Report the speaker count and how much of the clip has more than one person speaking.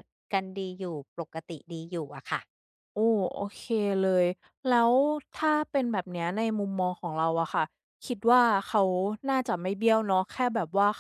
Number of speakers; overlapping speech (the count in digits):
2, no overlap